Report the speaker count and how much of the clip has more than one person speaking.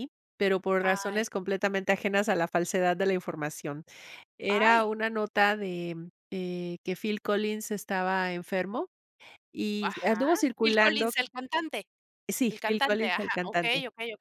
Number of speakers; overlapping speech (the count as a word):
two, about 22%